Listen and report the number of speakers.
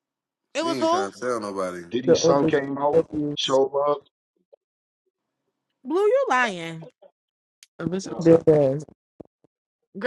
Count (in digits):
4